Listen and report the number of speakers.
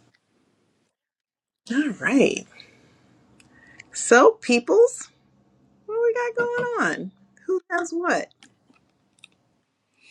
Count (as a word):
one